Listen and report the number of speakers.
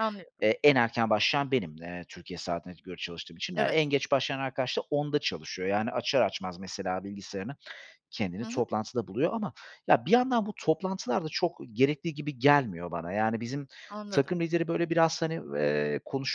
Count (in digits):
2